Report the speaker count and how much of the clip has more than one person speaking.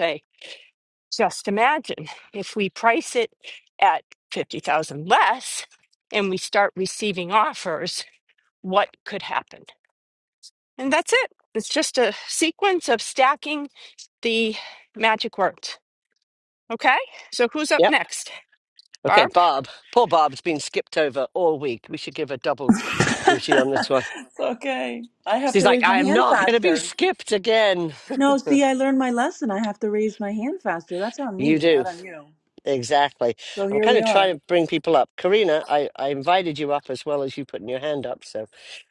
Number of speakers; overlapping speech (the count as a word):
three, about 7%